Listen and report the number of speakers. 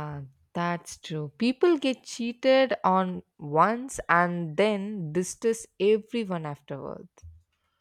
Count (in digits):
1